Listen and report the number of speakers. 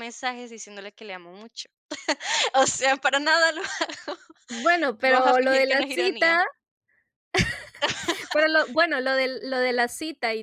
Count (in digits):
2